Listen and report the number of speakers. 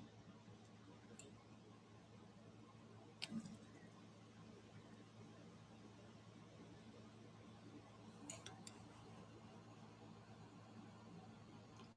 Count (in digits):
0